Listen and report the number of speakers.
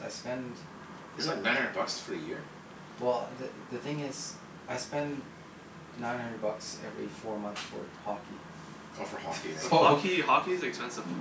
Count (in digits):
3